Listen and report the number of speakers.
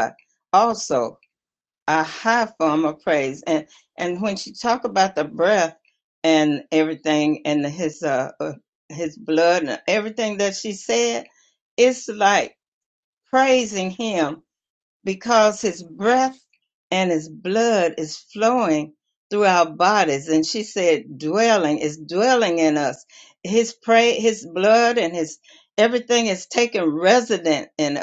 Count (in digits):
1